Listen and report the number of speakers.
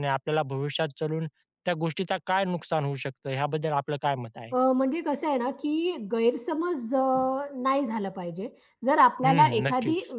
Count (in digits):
2